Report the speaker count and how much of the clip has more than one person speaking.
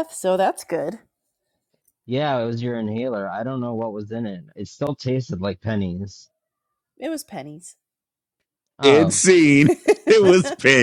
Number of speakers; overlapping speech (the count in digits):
3, about 3%